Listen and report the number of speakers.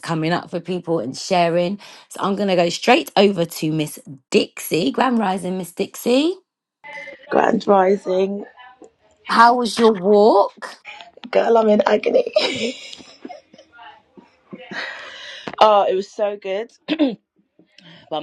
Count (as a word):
two